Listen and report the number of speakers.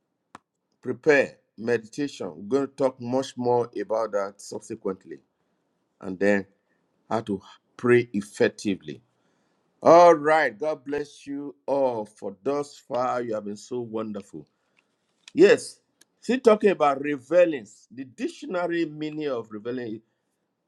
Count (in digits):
1